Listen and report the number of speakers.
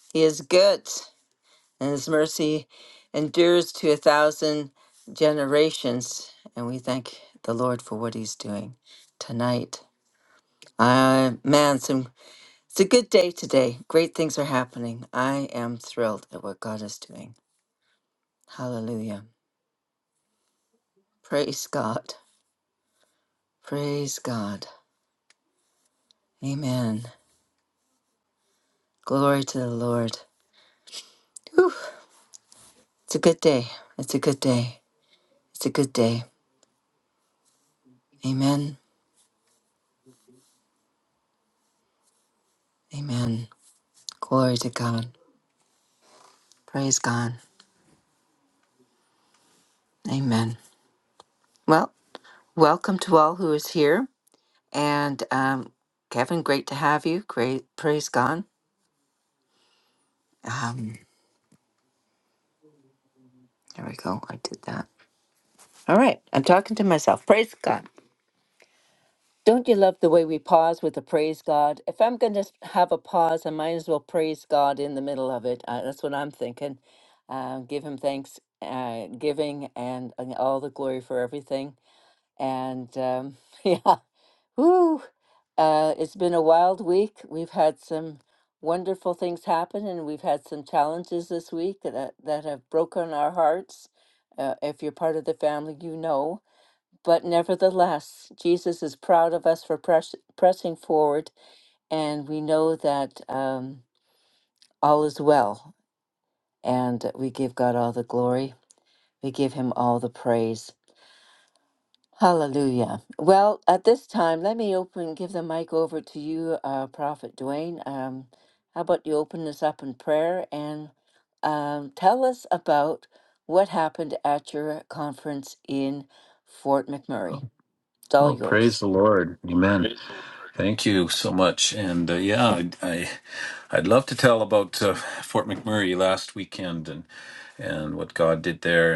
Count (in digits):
2